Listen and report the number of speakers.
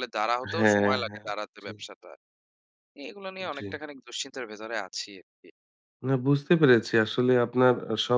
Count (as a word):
two